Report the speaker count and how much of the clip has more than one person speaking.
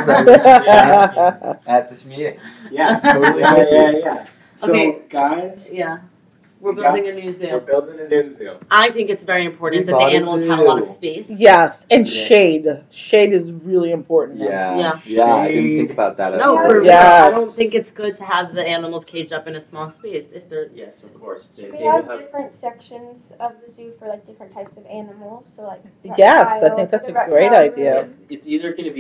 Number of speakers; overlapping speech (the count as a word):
six, about 35%